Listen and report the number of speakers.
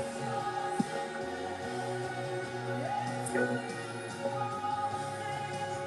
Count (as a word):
zero